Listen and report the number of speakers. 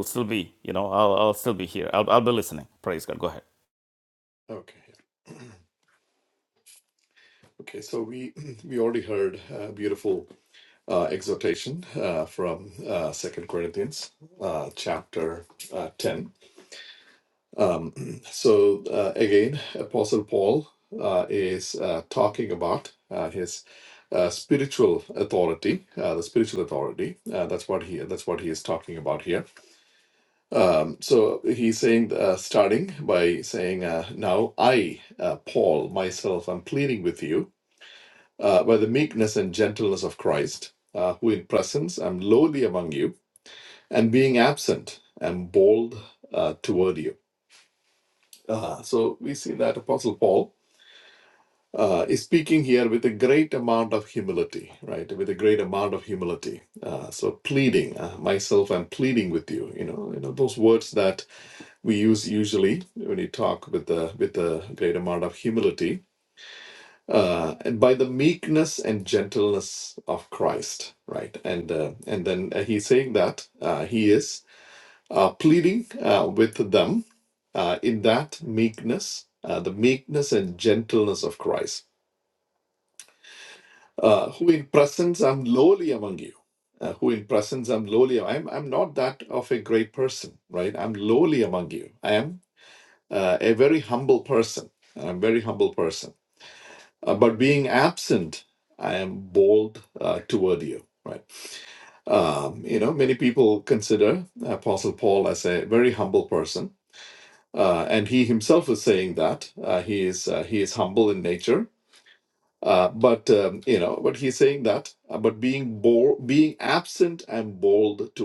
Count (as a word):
two